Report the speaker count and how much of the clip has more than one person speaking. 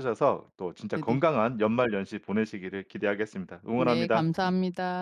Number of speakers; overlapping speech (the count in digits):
2, about 20%